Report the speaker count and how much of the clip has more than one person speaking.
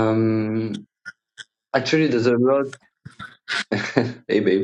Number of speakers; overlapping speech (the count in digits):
1, no overlap